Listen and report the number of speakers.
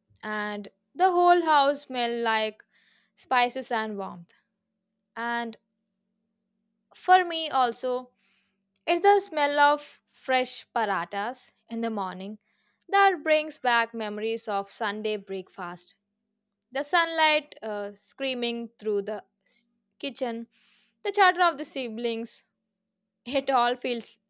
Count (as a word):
one